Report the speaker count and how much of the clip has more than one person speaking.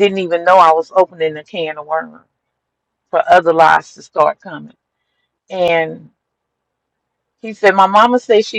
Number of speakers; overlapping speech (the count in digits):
1, no overlap